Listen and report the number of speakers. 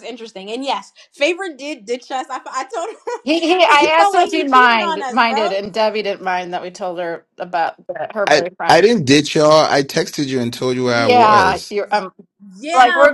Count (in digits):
3